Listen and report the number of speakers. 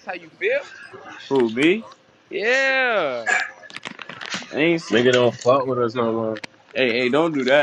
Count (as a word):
three